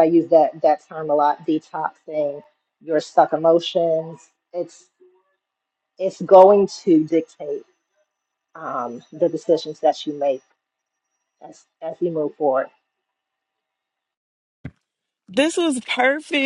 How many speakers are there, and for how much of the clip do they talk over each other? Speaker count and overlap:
2, no overlap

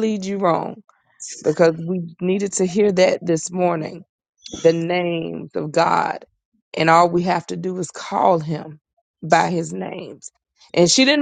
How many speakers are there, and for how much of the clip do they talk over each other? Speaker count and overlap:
1, no overlap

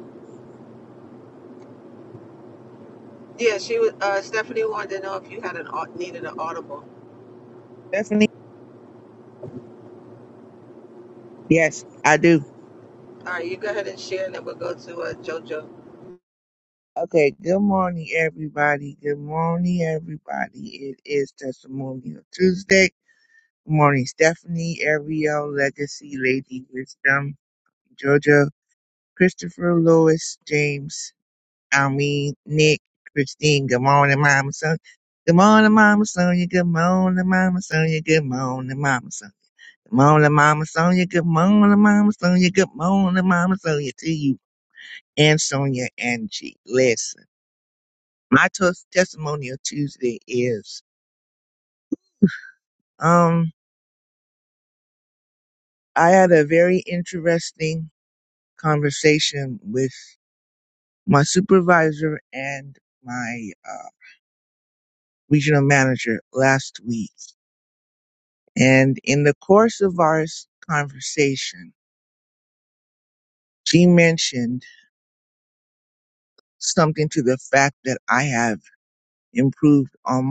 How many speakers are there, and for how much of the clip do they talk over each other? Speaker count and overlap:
2, no overlap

